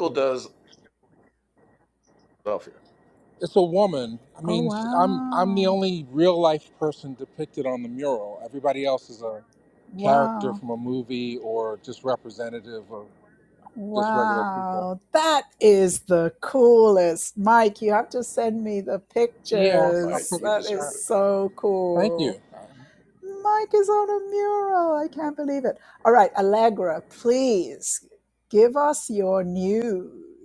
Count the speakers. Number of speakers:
3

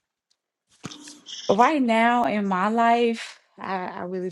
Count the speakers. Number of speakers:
1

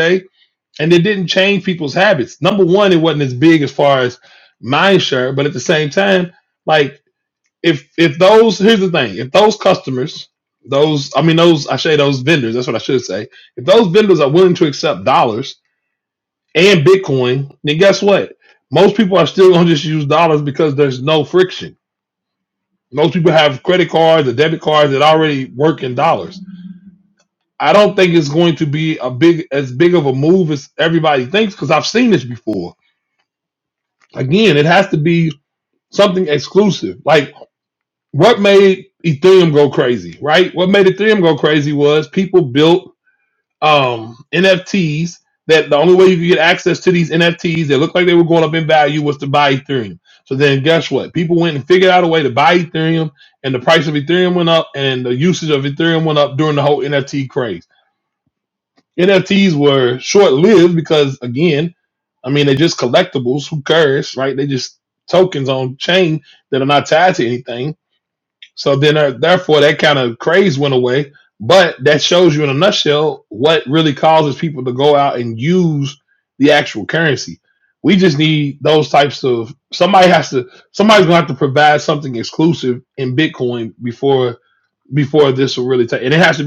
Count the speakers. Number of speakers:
1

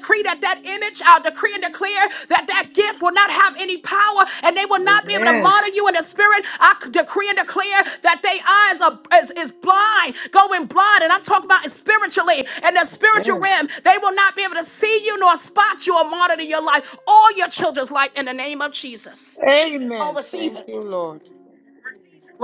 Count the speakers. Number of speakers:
2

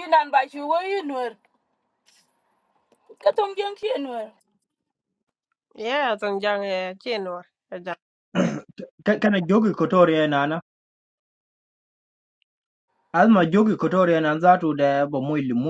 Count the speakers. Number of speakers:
3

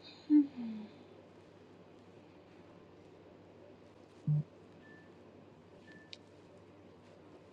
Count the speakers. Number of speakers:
0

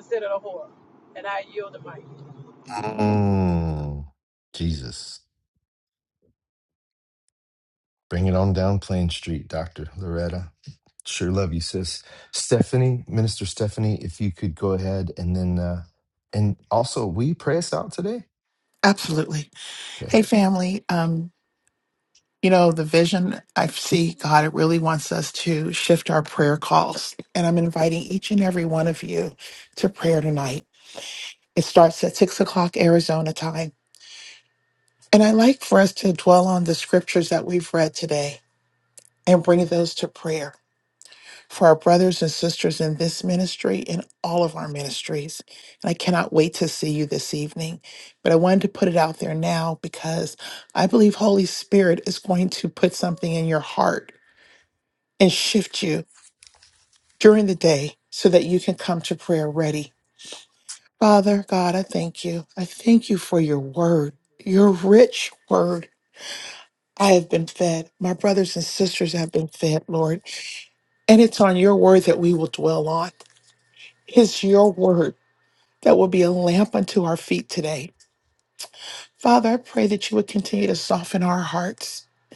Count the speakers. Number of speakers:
3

